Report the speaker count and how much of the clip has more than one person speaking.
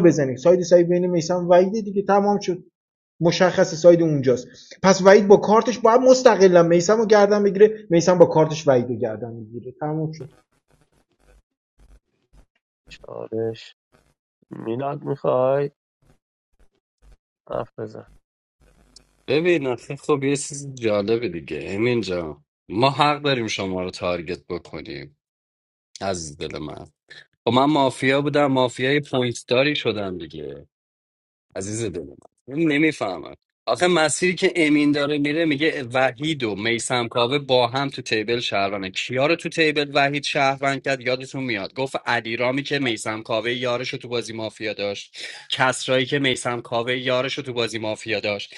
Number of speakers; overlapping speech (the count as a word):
three, no overlap